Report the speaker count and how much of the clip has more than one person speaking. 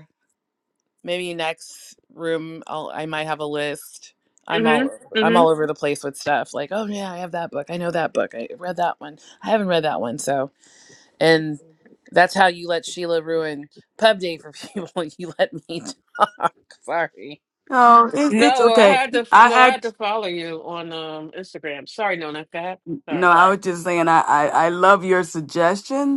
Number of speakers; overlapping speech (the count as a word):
three, about 9%